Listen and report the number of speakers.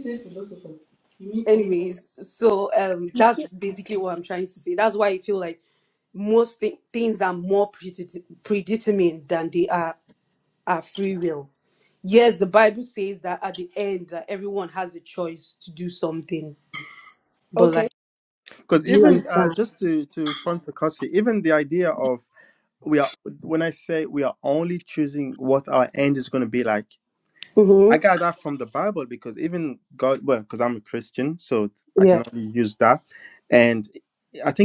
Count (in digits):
3